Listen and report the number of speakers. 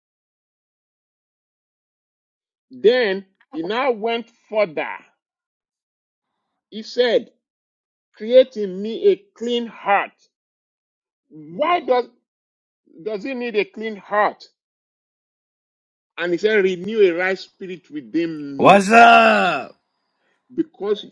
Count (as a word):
two